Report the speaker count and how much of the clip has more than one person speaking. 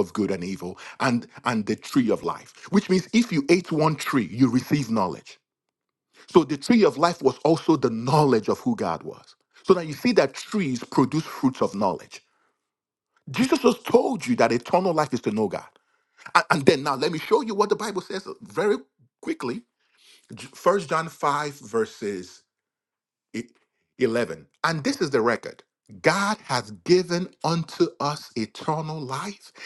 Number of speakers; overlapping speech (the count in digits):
1, no overlap